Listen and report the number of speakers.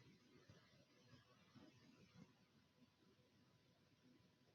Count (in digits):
0